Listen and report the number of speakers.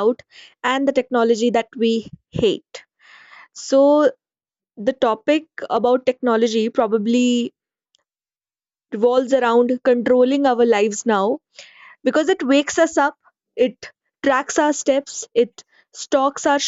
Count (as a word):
one